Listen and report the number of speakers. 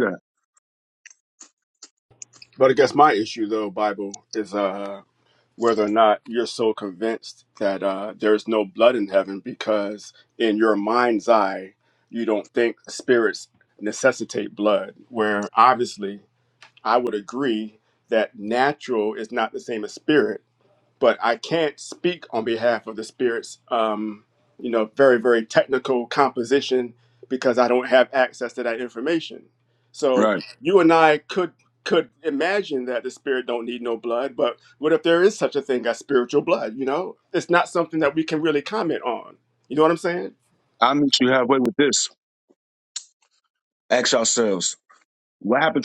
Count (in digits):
2